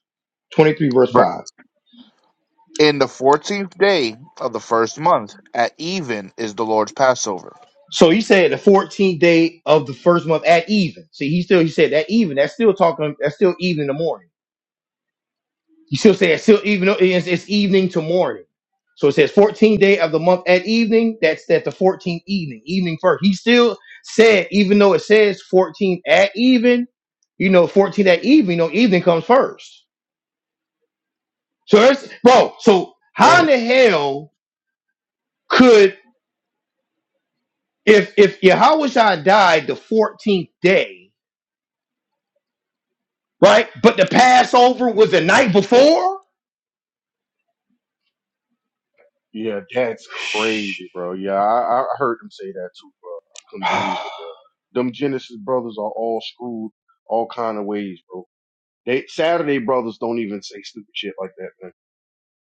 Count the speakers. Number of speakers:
3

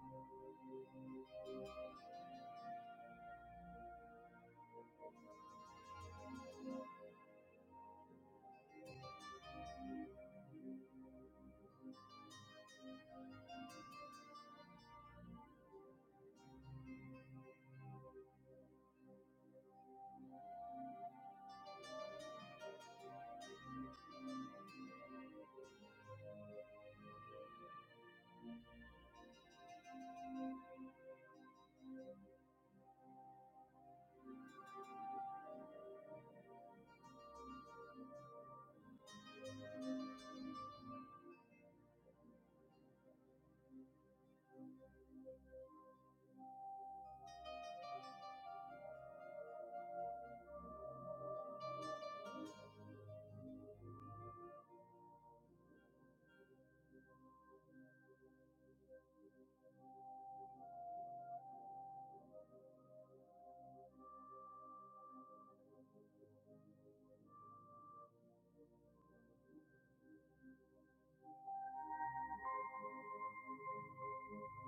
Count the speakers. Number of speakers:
0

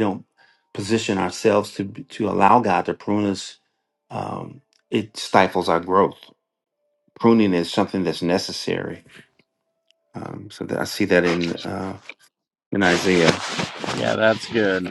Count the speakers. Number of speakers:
2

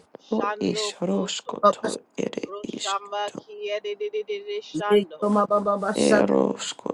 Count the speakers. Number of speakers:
3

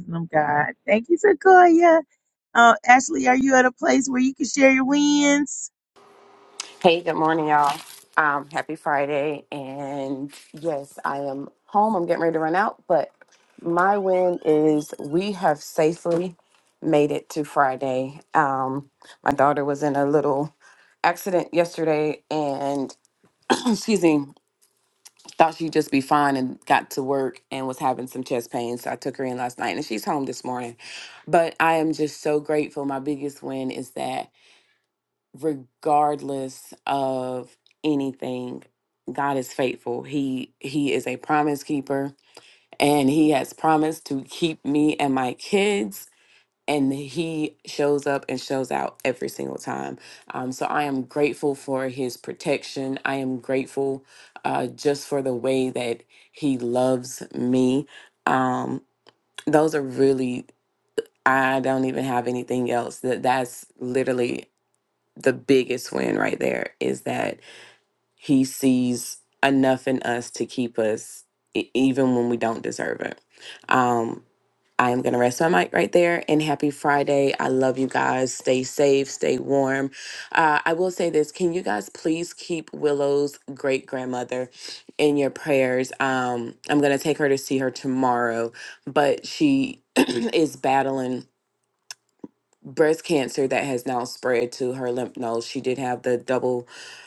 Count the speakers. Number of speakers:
2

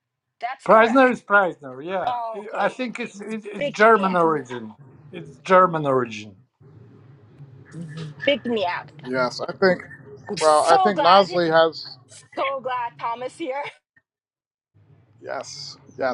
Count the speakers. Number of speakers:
3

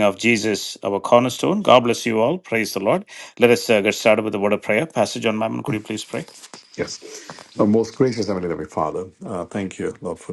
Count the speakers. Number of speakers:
2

